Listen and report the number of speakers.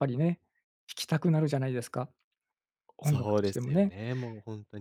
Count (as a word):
two